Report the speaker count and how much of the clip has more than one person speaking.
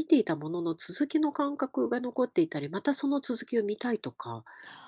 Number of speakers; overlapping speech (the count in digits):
1, no overlap